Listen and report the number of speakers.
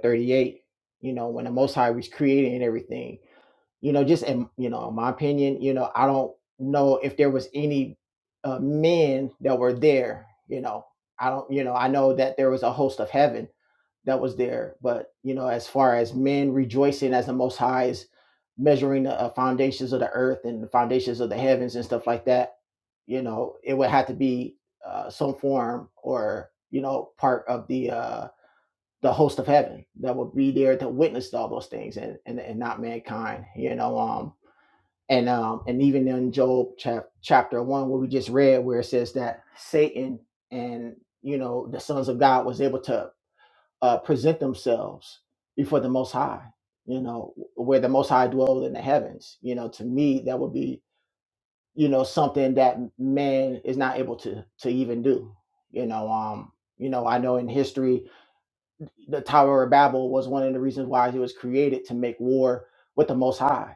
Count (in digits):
1